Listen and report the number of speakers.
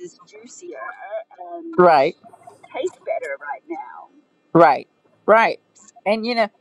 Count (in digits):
2